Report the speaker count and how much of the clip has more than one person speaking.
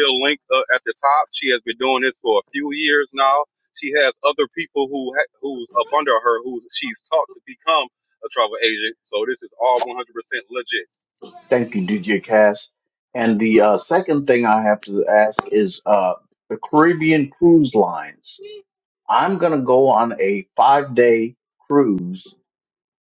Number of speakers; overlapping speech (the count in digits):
2, no overlap